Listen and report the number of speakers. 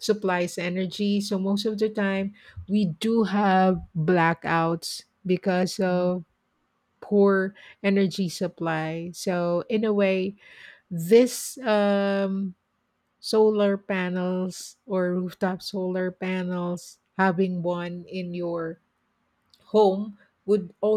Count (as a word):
one